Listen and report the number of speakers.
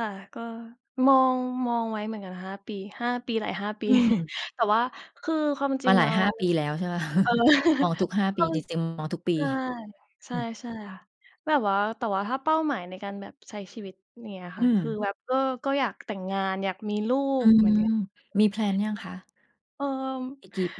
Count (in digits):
2